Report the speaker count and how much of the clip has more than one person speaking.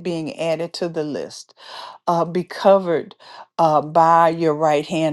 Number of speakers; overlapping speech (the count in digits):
1, no overlap